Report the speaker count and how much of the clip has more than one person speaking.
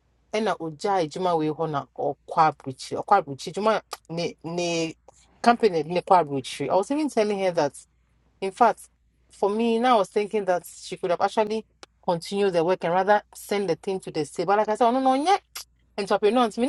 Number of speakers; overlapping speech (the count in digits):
1, no overlap